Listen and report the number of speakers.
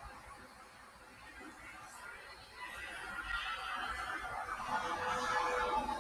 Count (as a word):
zero